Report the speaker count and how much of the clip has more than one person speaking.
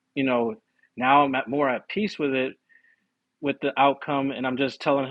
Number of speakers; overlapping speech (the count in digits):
1, no overlap